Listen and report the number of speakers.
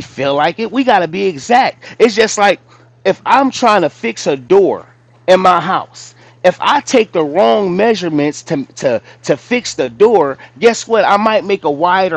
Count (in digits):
1